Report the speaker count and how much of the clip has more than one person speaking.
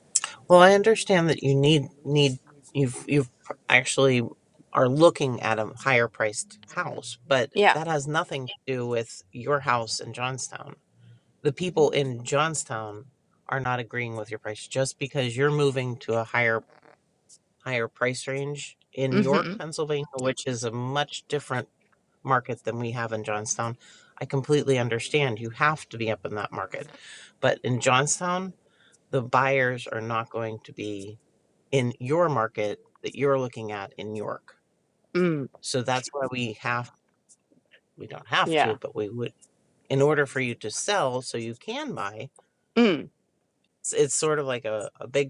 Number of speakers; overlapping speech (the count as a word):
two, about 2%